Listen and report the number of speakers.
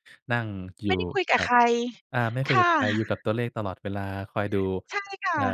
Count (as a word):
two